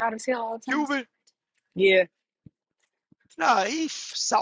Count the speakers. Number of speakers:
two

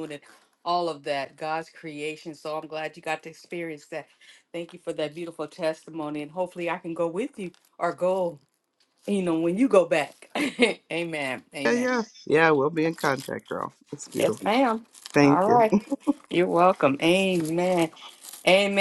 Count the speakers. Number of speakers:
two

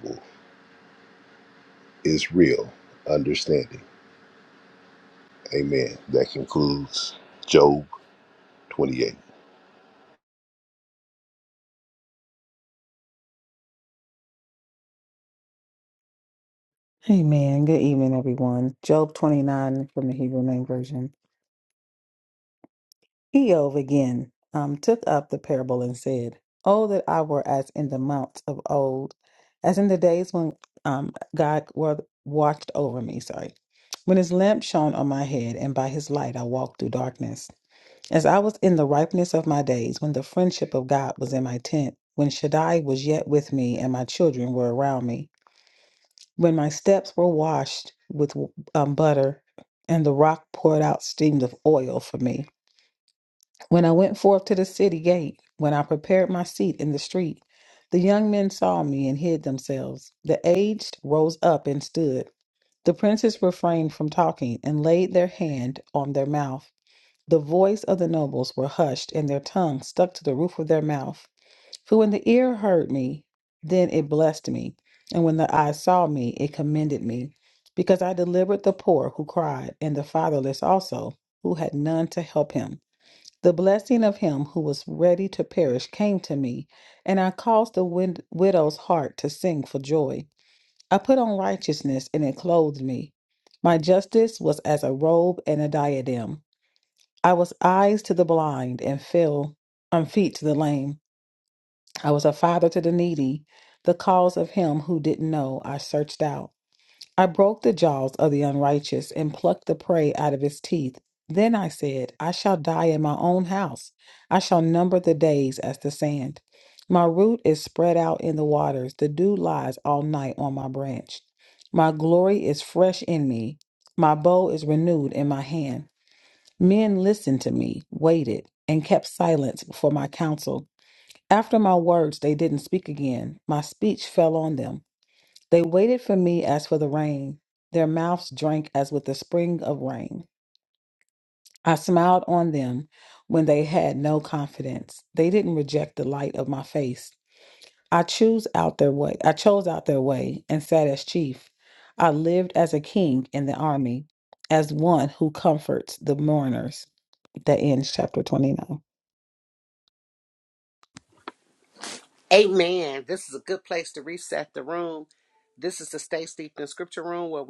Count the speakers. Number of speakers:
three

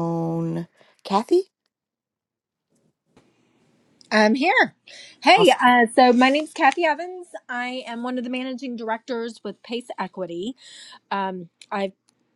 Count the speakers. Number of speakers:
two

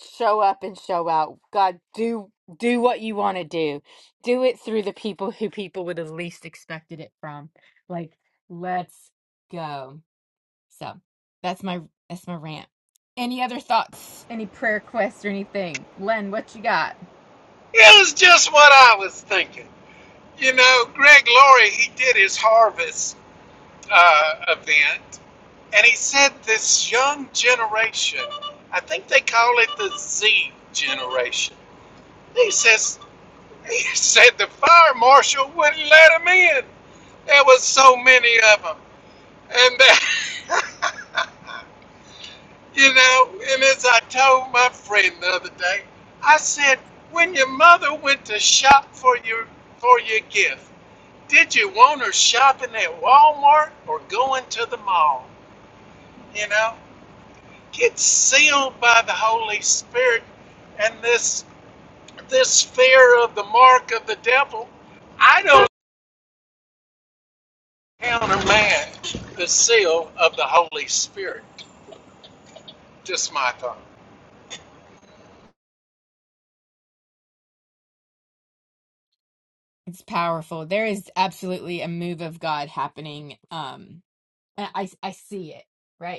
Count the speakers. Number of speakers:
two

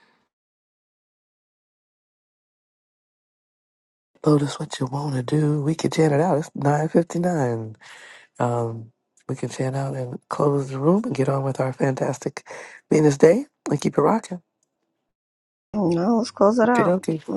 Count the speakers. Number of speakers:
two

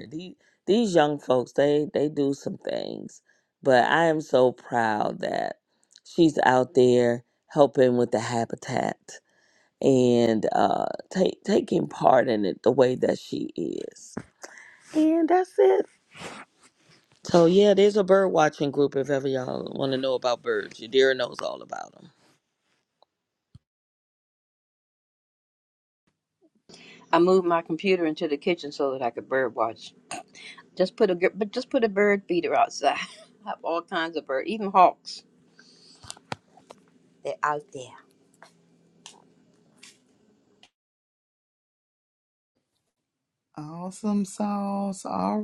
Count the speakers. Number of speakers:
three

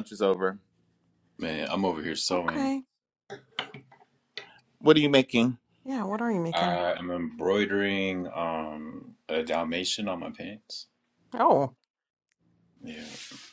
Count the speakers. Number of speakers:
three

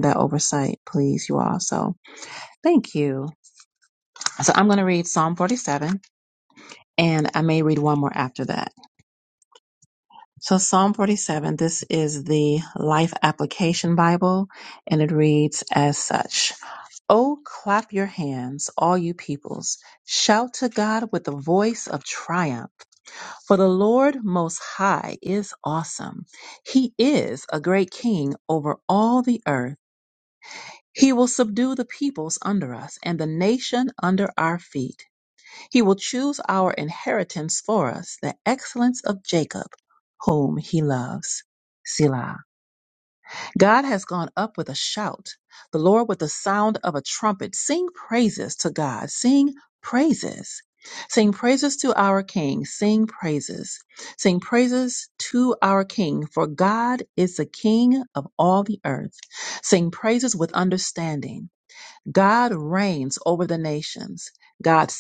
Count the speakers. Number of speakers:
one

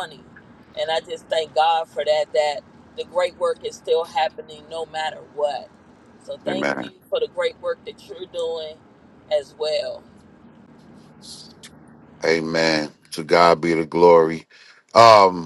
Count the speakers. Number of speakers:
two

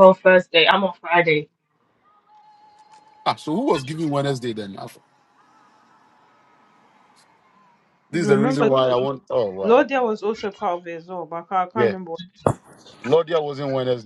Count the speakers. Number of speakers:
three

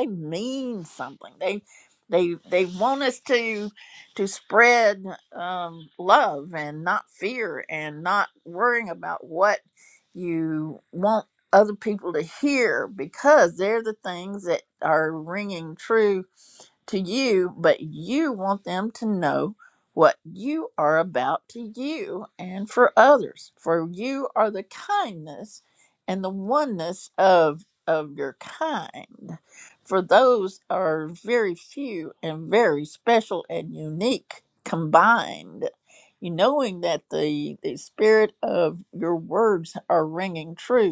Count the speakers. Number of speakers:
one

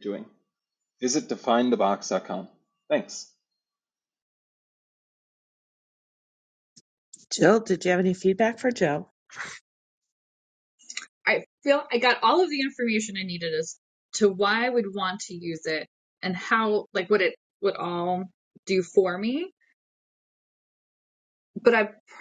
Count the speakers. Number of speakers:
three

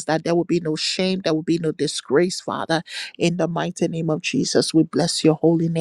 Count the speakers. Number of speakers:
one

